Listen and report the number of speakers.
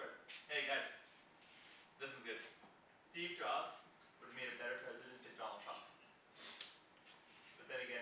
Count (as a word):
one